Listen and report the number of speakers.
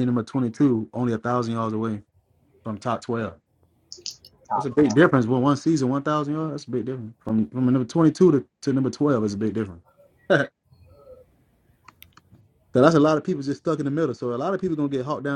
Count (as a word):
one